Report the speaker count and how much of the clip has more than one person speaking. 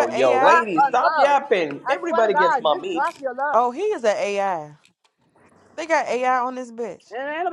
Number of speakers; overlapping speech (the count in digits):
3, about 35%